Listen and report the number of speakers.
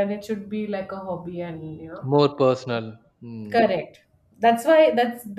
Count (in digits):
2